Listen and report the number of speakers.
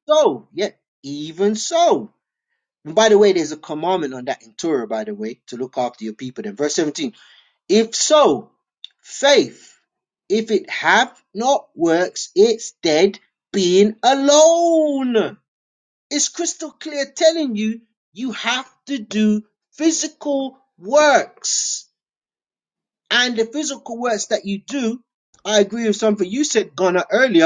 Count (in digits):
1